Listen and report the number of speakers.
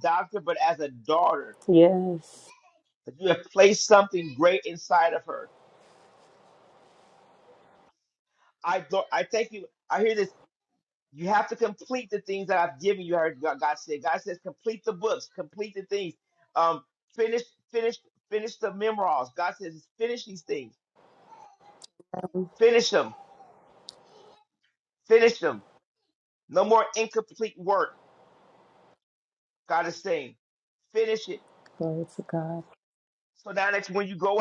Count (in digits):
2